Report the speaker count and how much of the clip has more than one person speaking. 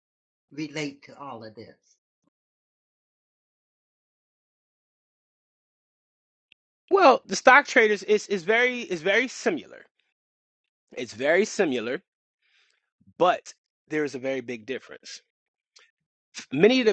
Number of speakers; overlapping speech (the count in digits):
2, no overlap